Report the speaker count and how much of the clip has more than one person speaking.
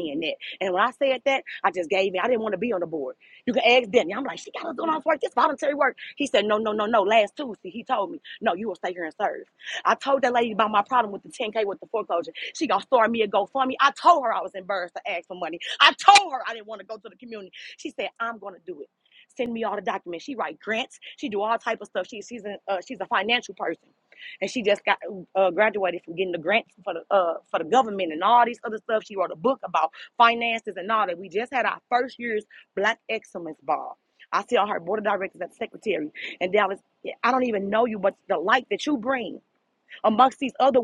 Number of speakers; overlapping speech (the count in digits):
1, no overlap